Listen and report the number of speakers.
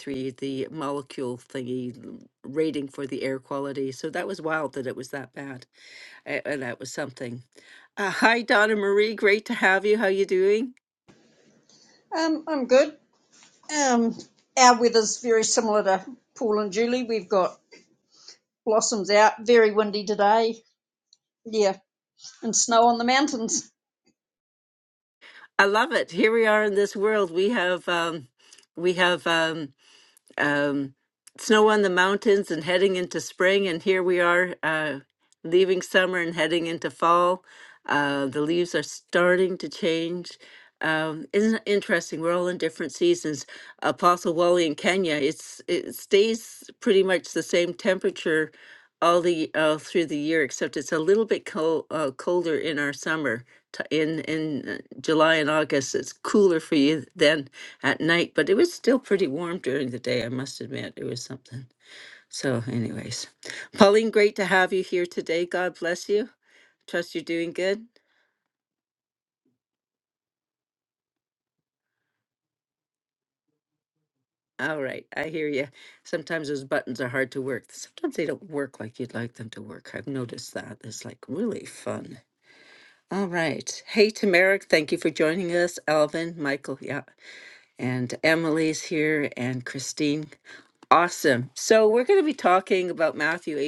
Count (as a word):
two